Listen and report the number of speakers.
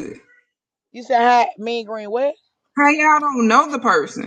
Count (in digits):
2